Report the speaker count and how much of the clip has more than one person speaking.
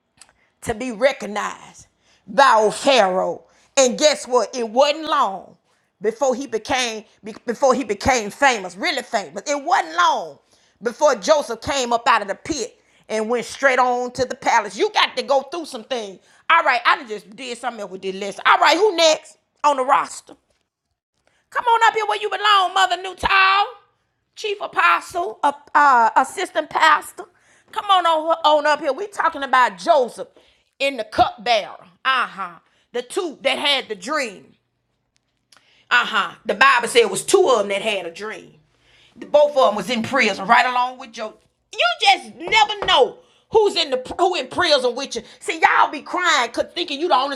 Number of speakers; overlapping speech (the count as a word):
one, no overlap